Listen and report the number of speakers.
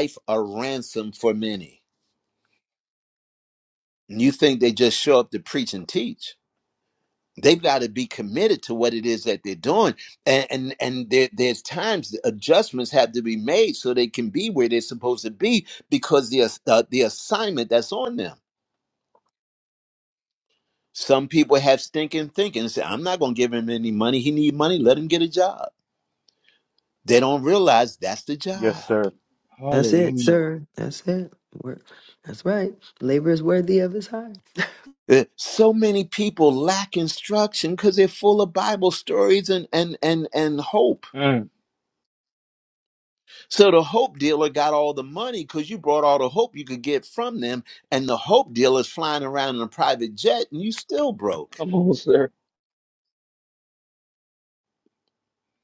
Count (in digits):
3